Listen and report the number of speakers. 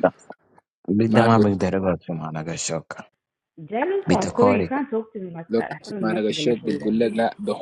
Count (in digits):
3